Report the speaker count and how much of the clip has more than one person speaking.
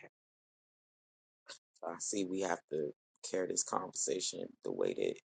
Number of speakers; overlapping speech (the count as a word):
one, no overlap